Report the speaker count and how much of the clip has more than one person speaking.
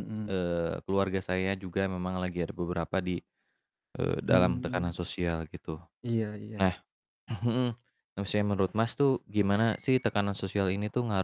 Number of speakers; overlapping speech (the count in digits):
2, about 7%